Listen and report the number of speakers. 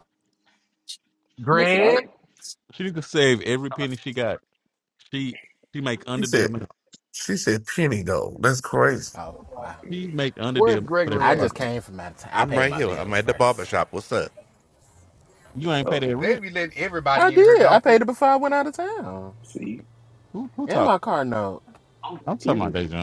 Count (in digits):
6